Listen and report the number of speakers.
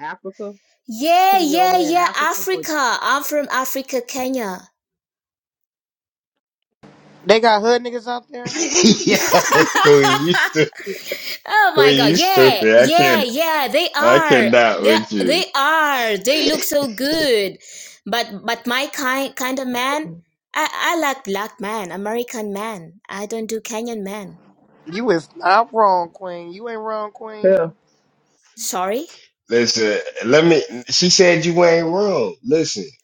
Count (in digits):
4